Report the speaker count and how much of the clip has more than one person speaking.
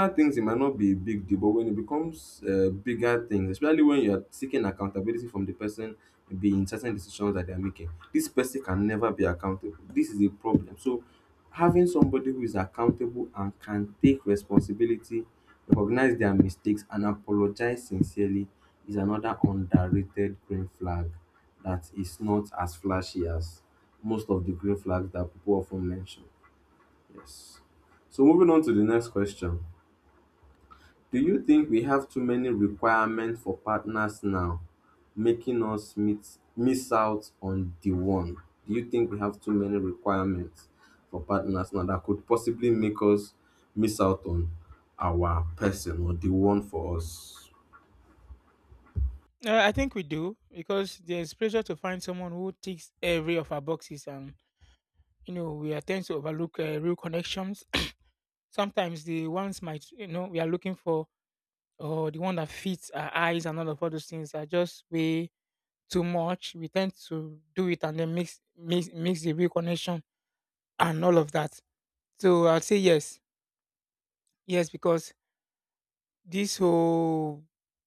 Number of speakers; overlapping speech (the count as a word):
two, no overlap